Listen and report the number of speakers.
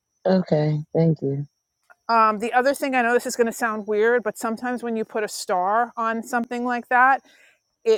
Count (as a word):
two